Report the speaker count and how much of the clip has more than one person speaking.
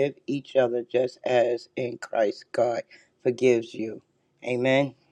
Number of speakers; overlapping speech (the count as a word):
one, no overlap